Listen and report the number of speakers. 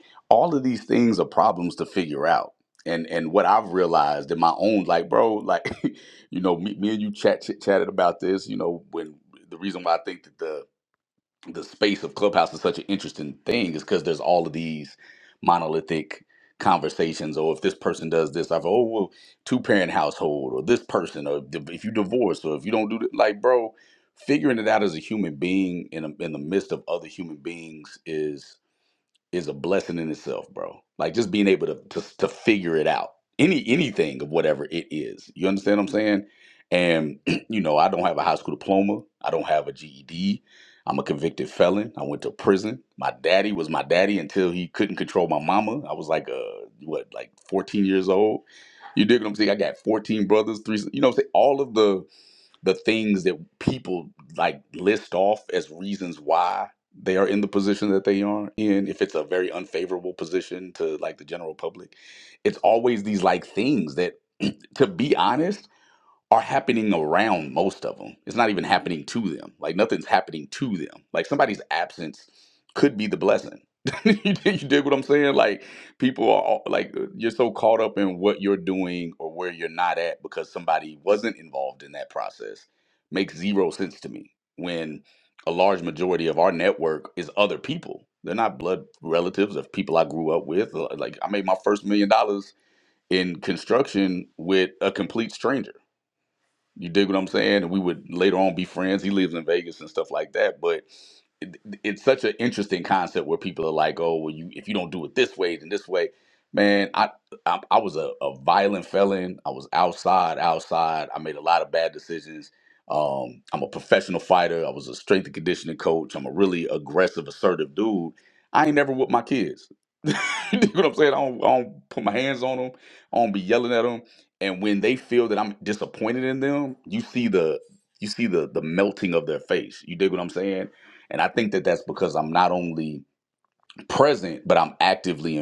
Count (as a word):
one